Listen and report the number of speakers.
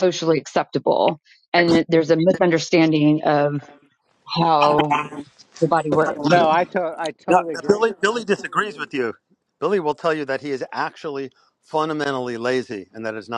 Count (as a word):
three